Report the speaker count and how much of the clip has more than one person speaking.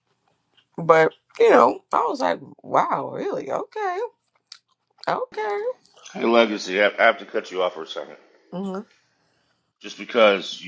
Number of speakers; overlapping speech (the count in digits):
2, no overlap